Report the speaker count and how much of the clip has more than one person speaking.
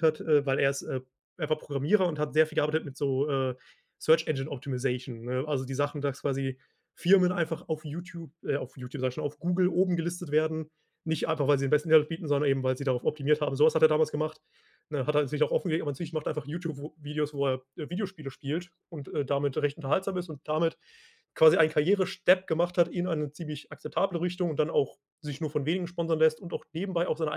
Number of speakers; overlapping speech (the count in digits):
1, no overlap